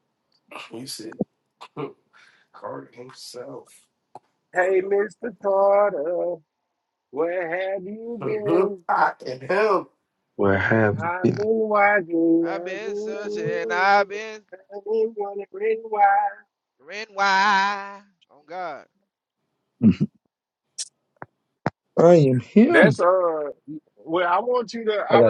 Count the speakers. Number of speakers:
4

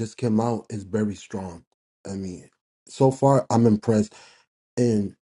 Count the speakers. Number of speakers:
1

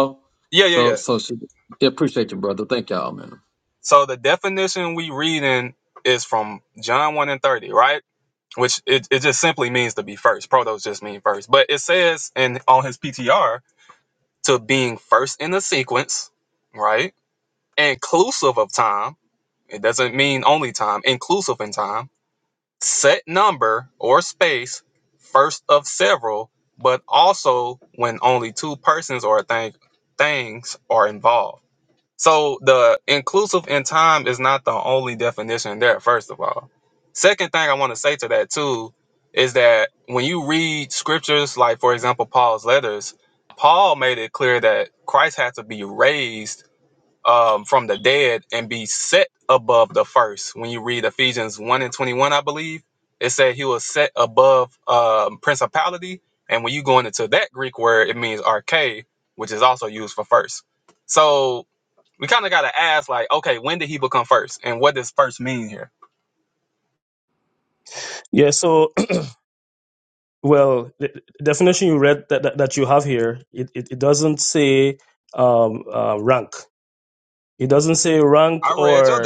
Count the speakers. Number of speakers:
3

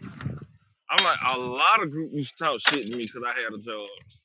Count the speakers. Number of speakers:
1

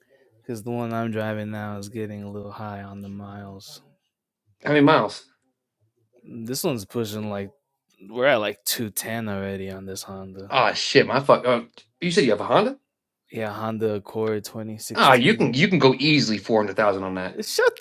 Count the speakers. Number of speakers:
2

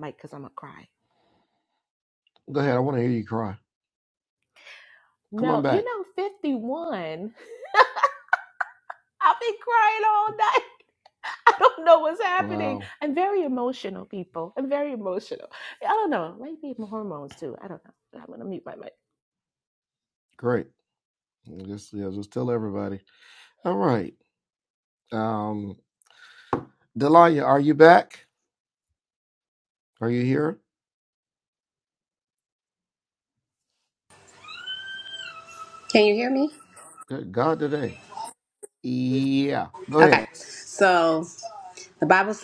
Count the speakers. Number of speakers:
3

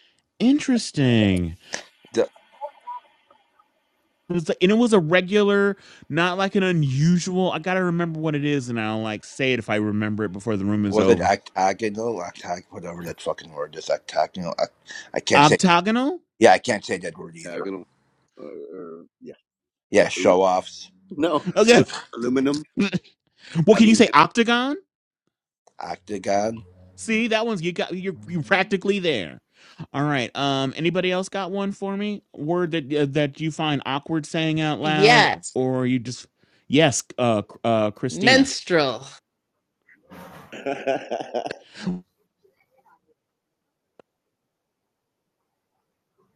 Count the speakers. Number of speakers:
4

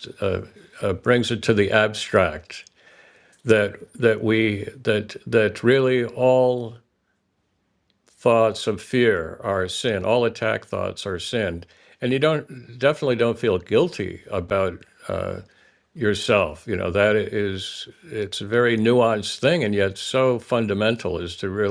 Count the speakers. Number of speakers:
1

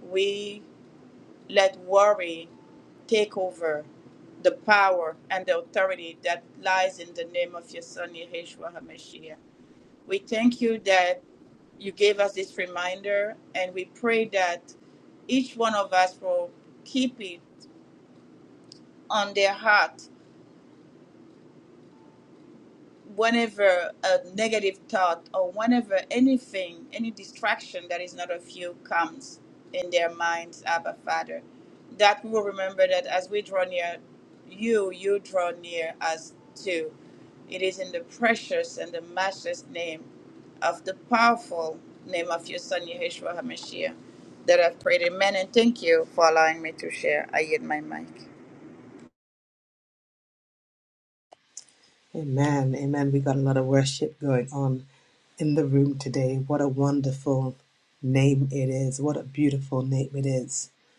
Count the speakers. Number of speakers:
2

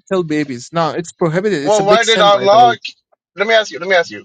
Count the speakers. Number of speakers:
2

